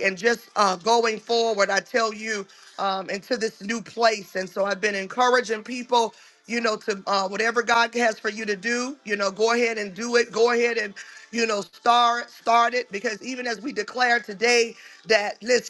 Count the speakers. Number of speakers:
1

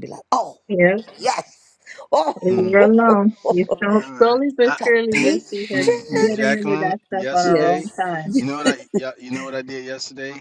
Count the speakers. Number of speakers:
3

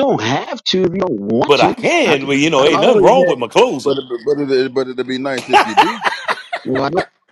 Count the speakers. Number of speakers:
3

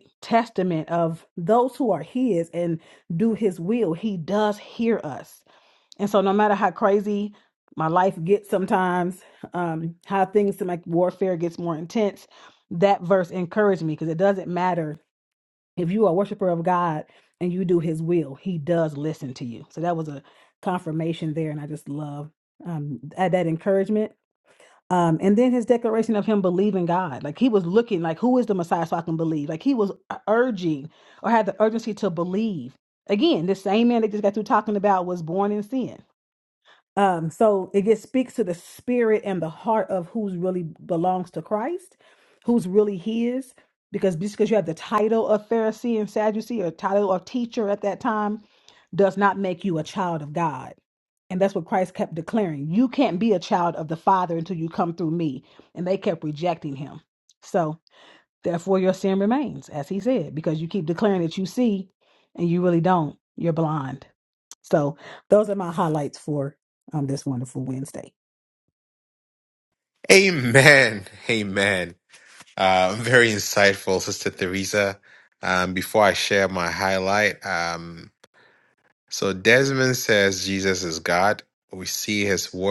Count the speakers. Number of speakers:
2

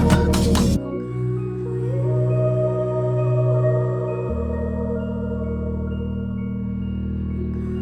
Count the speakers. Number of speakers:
0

